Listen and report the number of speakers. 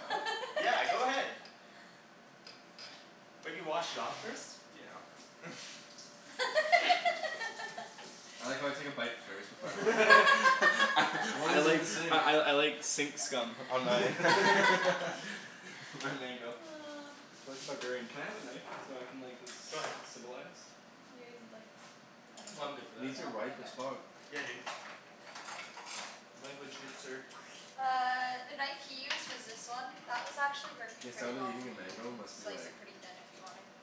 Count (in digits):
4